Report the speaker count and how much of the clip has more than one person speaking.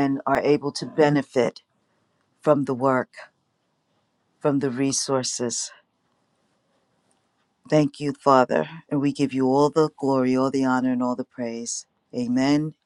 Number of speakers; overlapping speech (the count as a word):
one, no overlap